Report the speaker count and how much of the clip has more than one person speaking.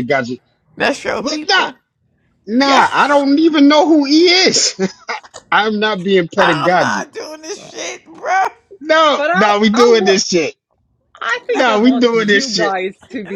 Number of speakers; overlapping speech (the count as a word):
three, about 32%